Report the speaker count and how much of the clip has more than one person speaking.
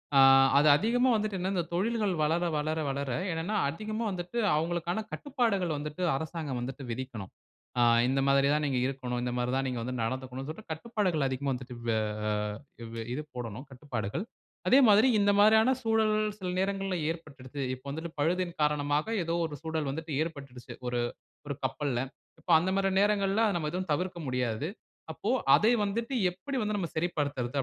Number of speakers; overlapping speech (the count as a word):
one, no overlap